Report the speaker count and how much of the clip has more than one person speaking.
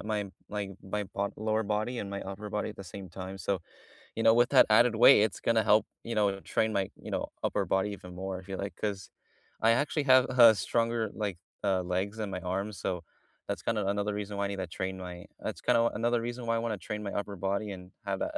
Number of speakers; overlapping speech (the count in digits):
1, no overlap